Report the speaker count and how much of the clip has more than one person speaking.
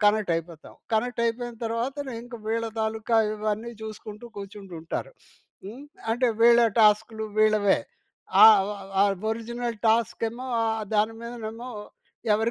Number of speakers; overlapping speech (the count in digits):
1, no overlap